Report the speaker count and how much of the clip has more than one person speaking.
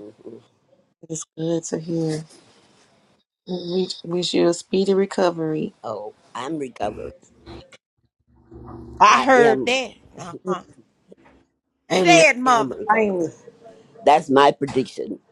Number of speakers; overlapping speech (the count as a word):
three, about 10%